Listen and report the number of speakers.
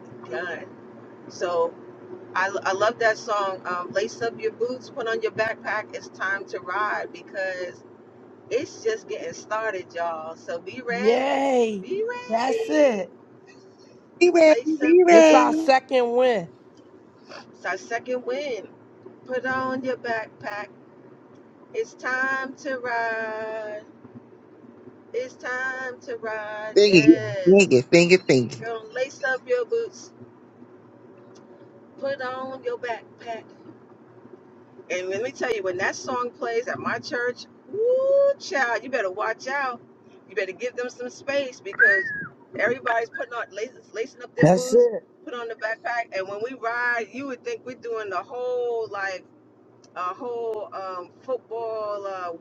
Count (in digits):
3